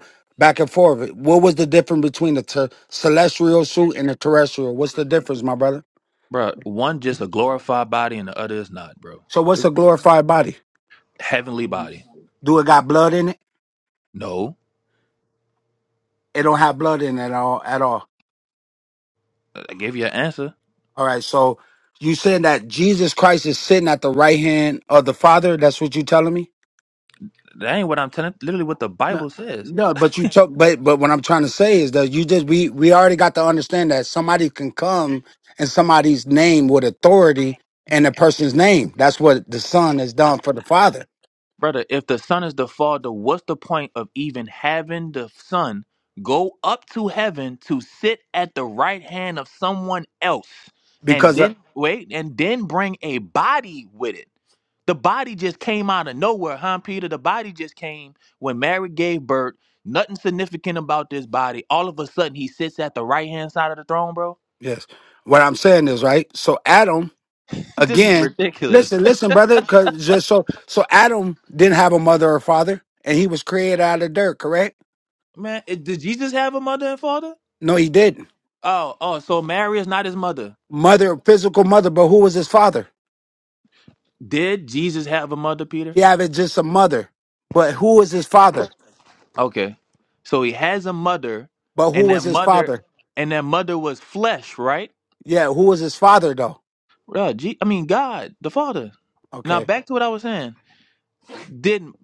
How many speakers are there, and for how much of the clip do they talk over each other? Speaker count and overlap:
2, about 2%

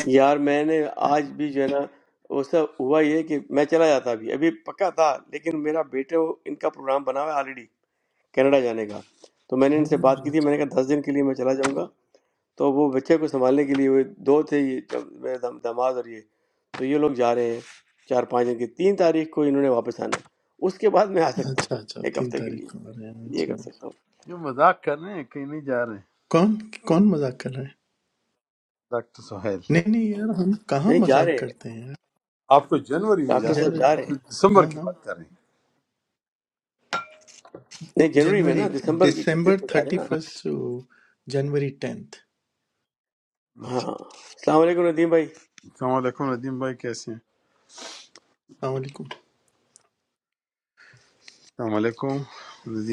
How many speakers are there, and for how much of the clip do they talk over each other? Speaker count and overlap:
3, about 10%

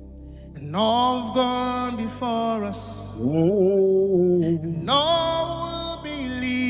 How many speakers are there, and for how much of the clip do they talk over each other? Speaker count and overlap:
2, no overlap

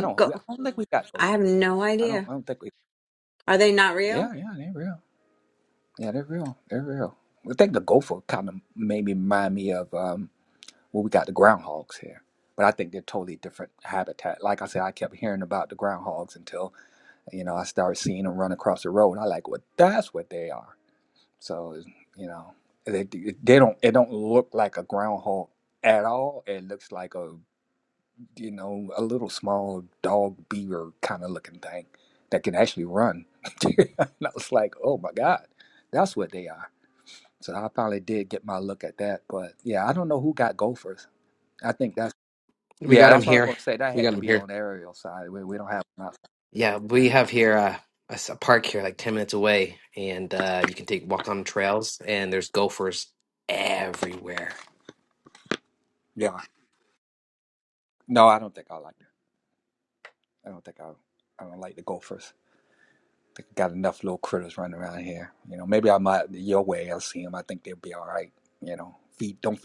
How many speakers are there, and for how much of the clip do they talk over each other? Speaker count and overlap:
3, about 3%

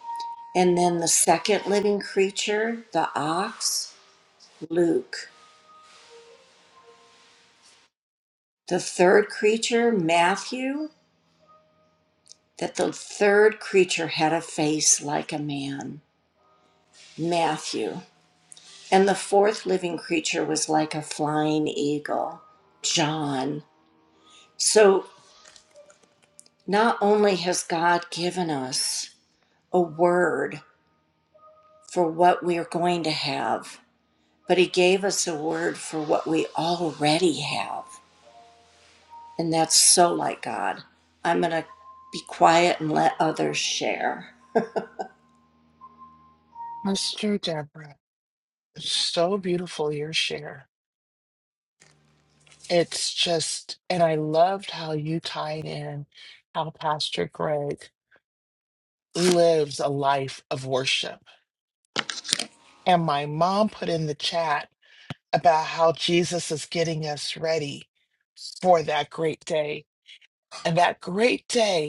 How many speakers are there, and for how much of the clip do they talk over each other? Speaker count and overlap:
2, no overlap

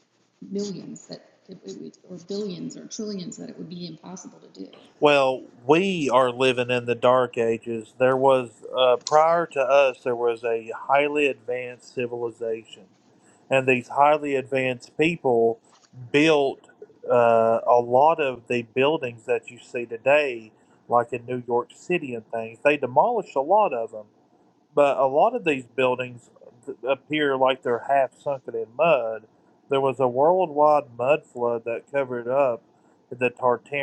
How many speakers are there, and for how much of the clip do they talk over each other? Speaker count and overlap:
2, no overlap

